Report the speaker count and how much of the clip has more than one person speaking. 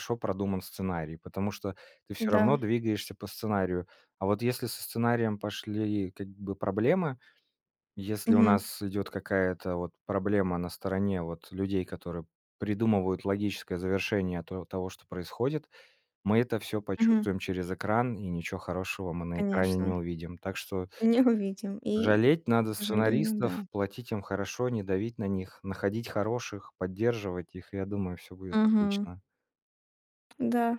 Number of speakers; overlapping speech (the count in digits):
2, about 11%